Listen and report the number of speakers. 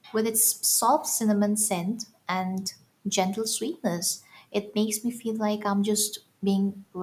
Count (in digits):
1